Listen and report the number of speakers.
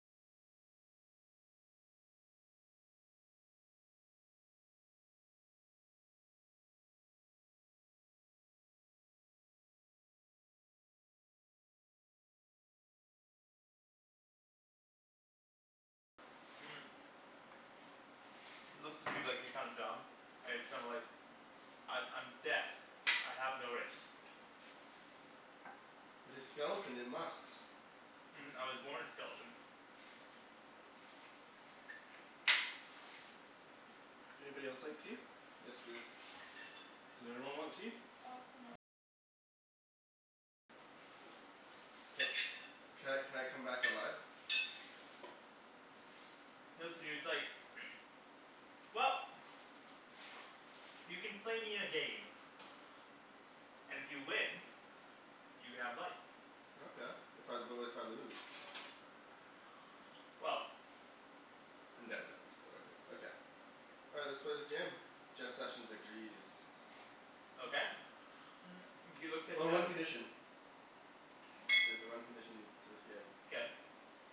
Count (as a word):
three